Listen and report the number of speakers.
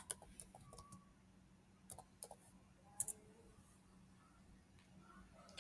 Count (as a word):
zero